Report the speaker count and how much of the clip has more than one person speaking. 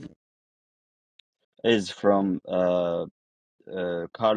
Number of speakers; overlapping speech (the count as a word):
one, no overlap